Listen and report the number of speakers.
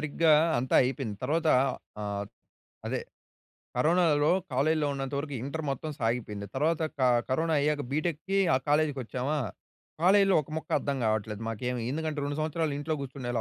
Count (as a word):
one